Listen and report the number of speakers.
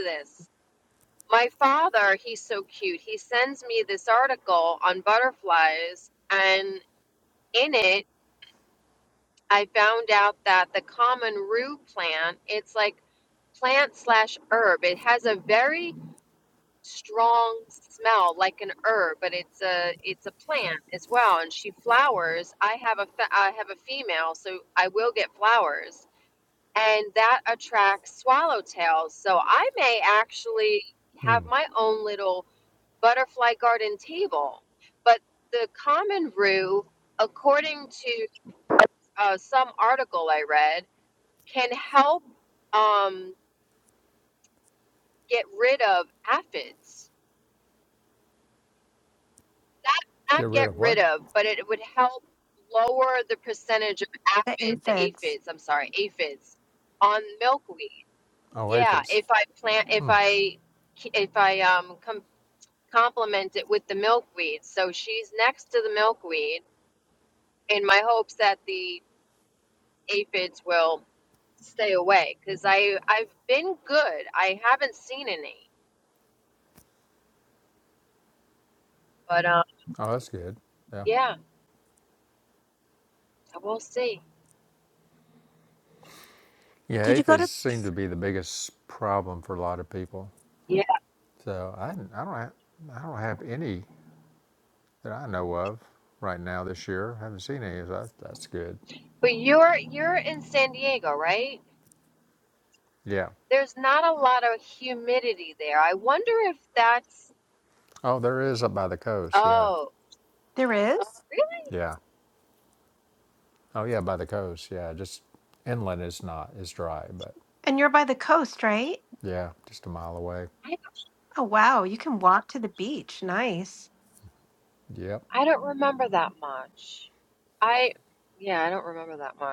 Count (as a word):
three